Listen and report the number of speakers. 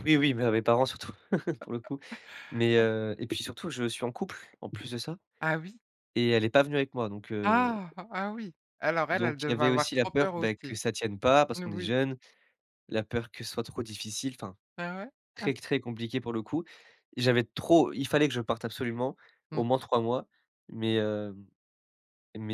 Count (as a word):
two